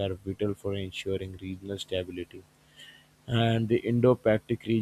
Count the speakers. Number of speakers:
one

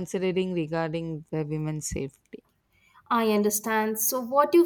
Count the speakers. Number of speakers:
two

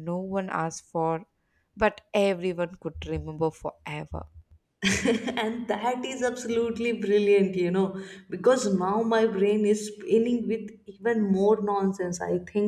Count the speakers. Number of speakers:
two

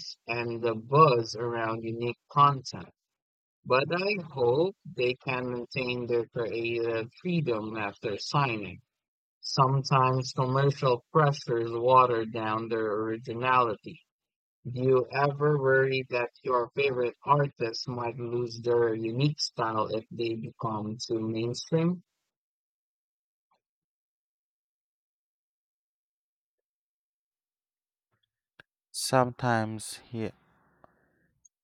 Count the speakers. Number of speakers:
two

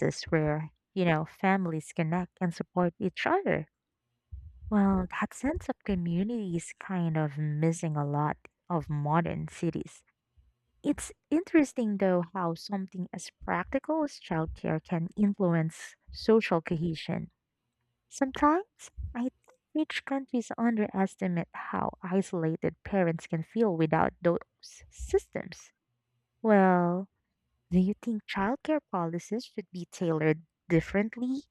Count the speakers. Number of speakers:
one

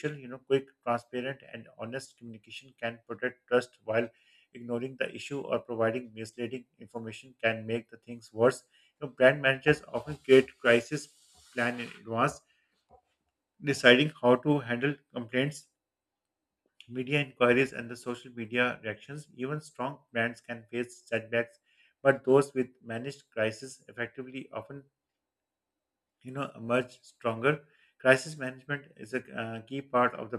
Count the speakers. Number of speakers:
one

